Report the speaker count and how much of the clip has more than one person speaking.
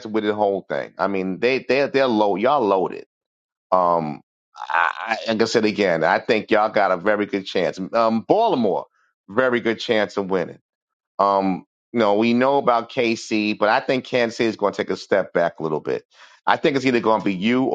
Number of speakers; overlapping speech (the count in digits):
1, no overlap